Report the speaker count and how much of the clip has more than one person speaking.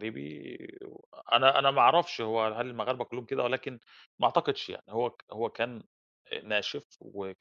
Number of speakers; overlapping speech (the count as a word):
one, no overlap